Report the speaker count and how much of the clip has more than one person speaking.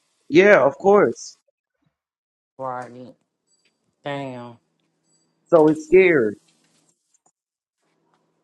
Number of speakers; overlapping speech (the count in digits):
2, no overlap